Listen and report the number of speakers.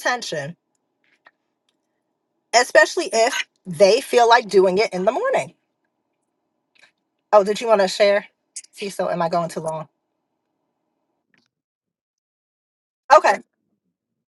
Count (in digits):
1